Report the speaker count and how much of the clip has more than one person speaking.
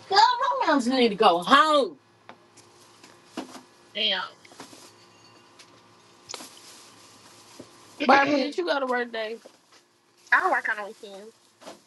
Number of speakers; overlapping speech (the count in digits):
2, about 5%